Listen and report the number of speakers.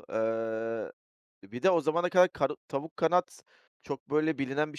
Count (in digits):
1